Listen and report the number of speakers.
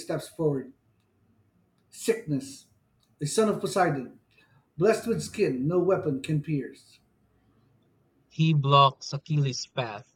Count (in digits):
2